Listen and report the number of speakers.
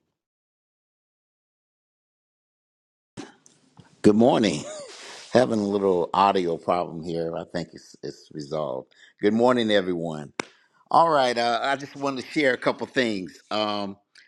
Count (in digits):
1